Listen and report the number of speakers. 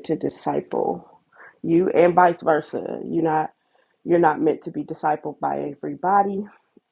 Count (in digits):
1